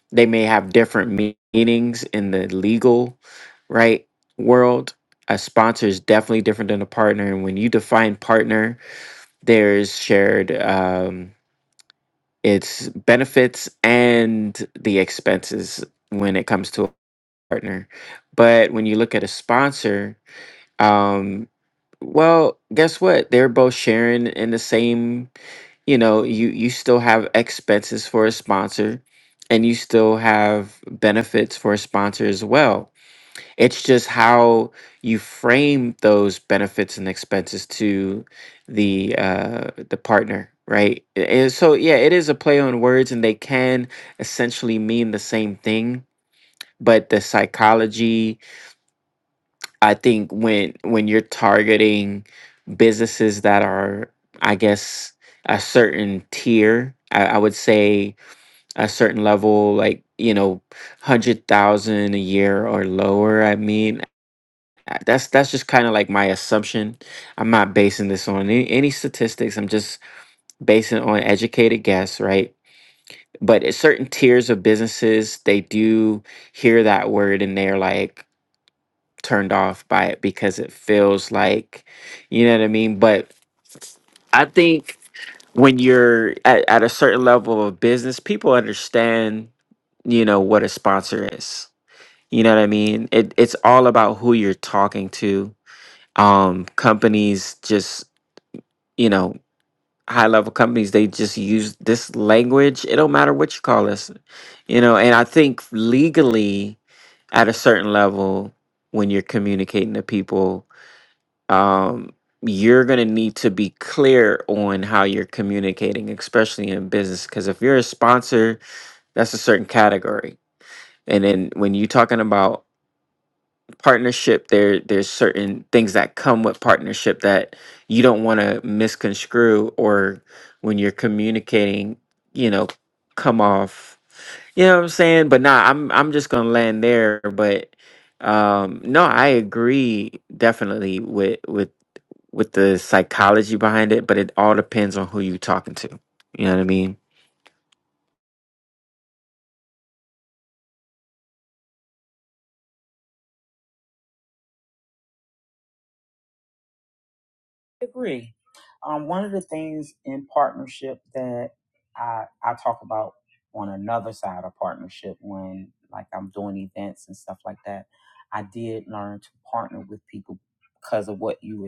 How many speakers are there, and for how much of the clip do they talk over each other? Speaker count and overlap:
2, no overlap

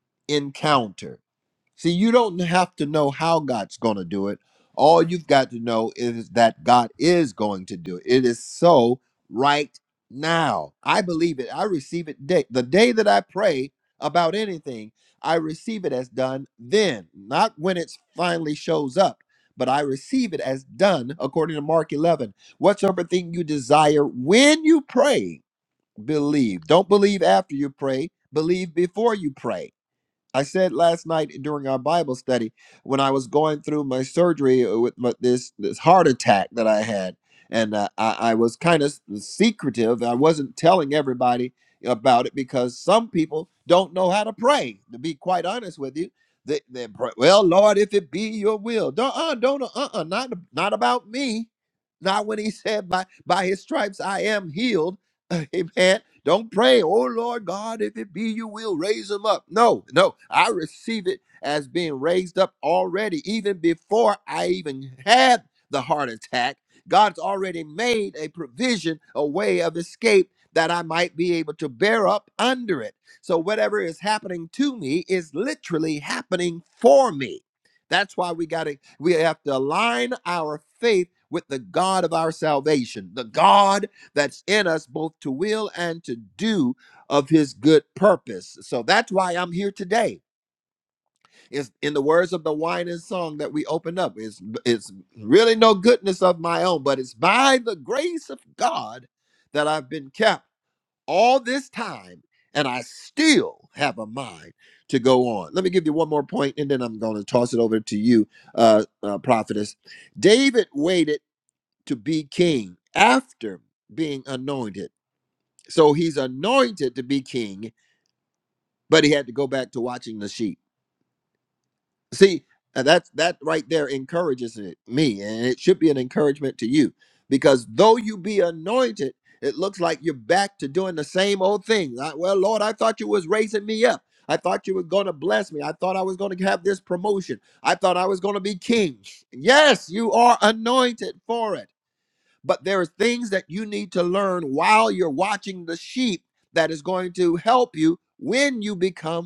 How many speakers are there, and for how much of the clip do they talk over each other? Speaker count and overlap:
1, no overlap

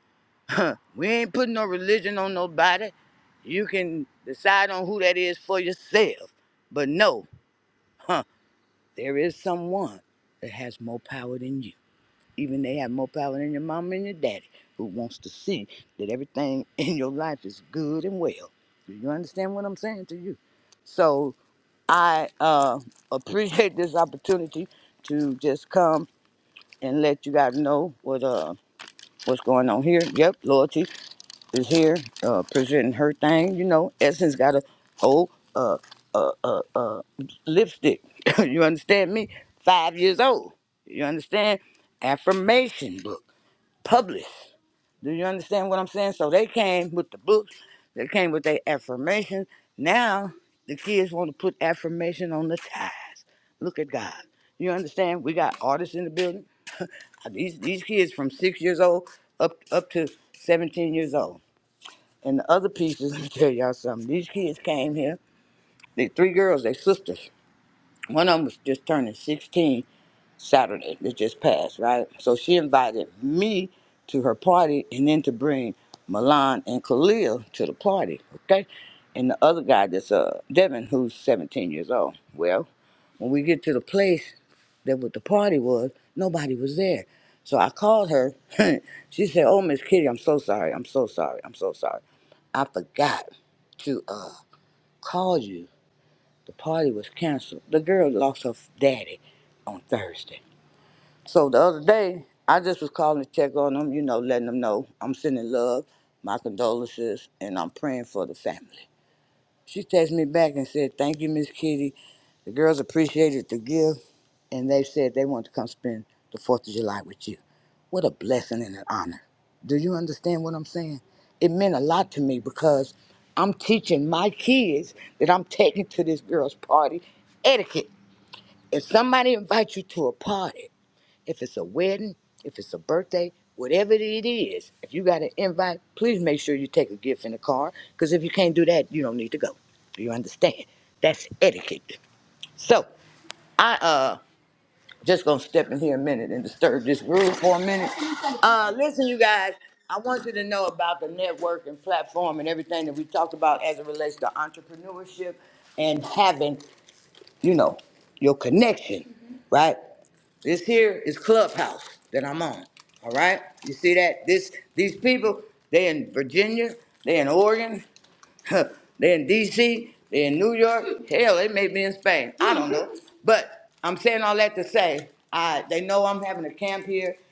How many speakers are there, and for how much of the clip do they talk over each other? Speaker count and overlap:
1, no overlap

